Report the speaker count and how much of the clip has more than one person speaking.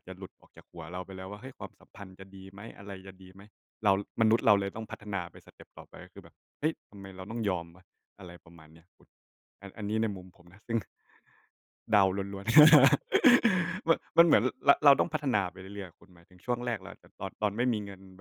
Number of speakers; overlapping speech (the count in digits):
1, no overlap